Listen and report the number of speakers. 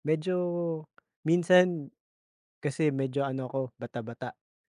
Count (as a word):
one